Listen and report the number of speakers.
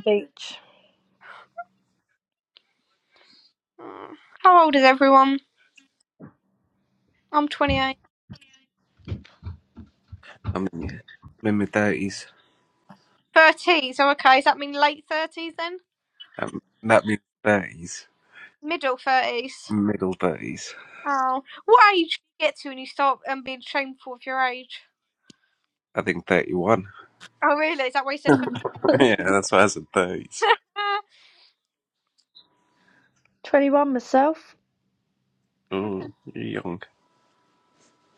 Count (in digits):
3